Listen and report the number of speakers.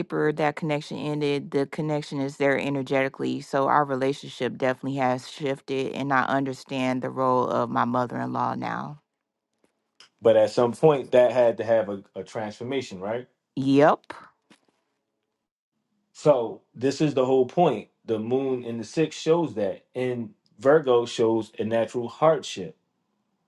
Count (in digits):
2